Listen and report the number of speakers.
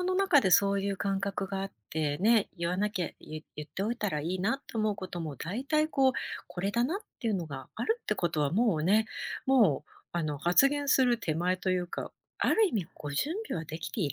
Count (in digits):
1